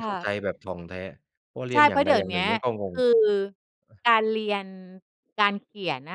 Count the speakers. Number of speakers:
two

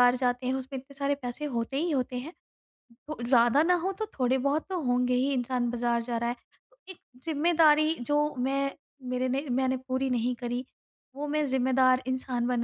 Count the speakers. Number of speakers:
one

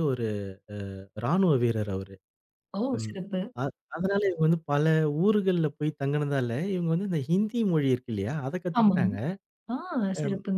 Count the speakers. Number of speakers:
two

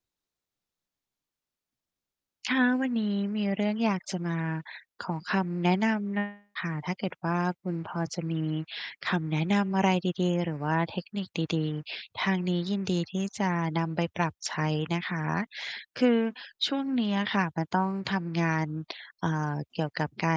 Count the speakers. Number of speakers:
one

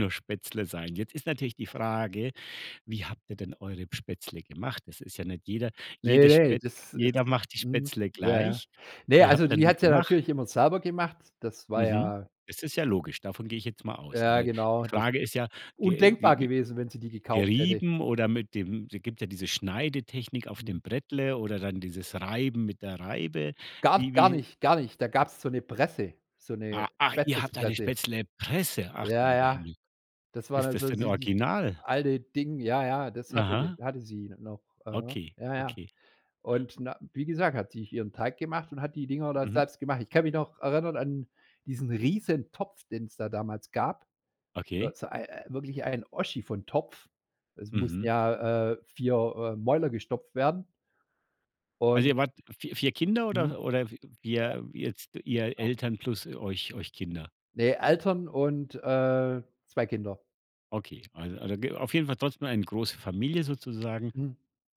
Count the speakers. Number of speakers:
two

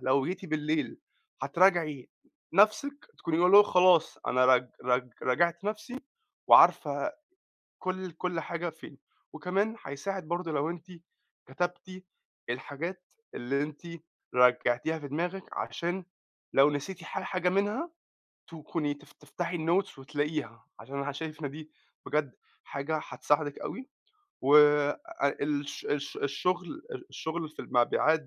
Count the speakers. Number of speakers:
one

